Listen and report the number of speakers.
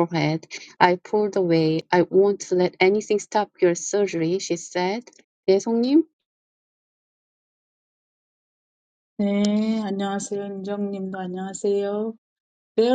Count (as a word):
two